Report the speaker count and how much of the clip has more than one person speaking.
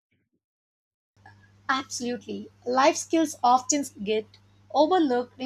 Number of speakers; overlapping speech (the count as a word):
one, no overlap